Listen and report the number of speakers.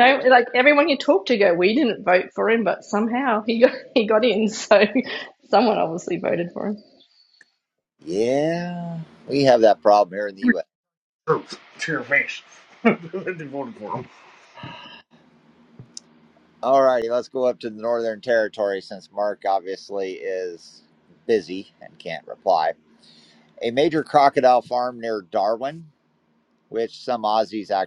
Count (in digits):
3